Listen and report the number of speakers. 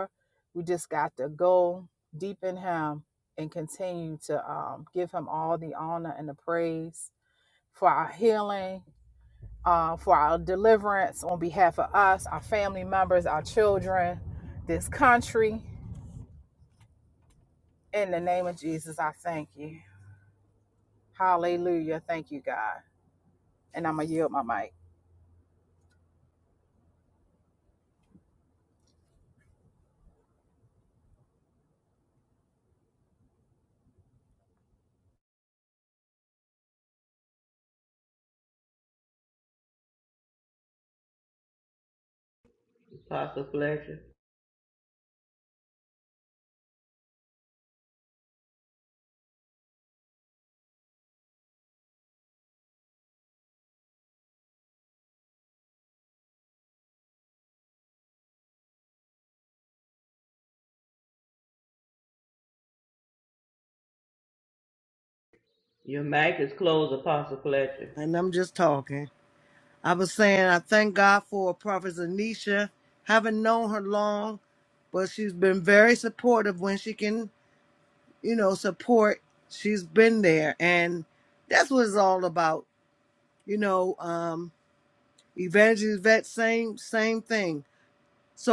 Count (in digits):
3